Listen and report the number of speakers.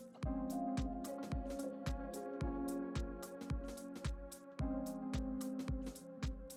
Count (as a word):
zero